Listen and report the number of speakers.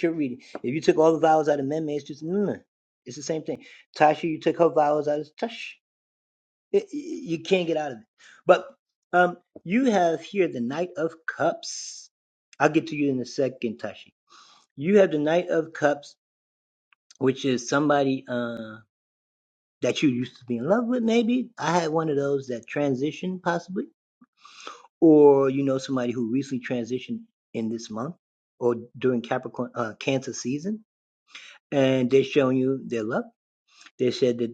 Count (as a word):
one